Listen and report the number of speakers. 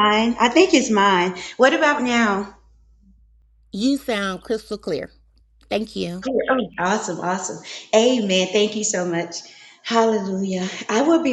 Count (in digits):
2